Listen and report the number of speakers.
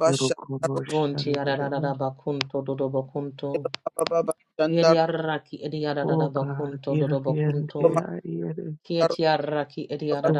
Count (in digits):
3